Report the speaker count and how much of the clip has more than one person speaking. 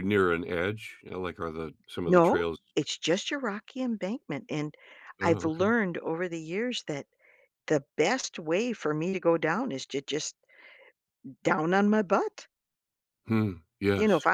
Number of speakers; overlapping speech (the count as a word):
two, about 8%